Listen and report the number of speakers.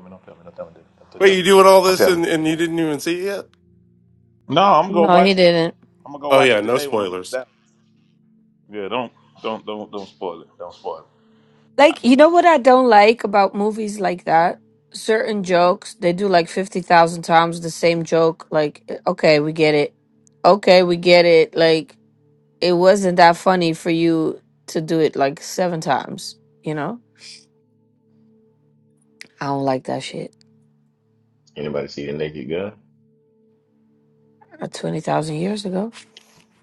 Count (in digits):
4